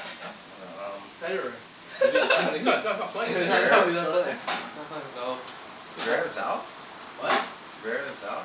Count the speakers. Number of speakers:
three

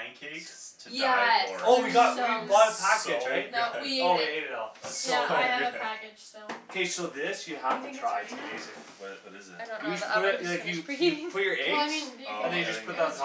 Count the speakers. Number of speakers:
four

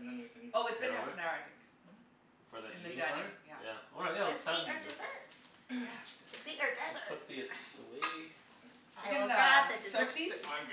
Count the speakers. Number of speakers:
four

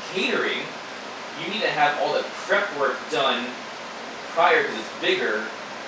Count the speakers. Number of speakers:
one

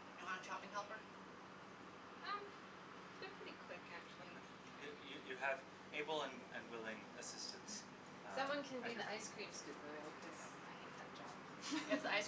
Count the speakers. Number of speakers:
three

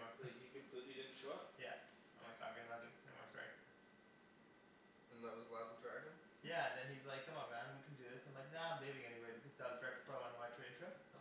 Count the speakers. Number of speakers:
three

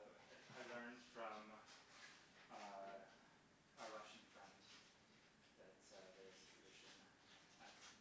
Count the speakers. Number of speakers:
one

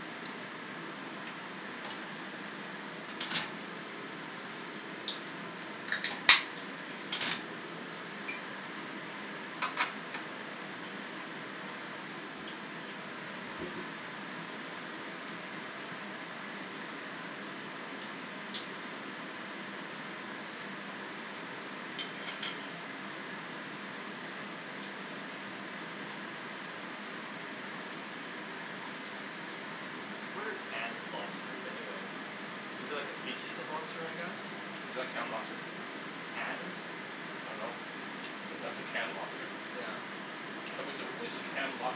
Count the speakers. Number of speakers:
two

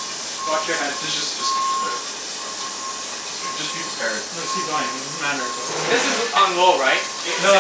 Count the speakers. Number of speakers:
three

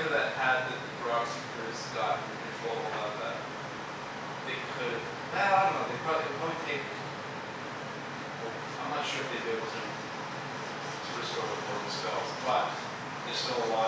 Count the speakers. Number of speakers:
one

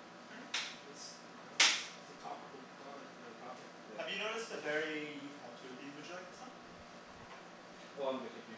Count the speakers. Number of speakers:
two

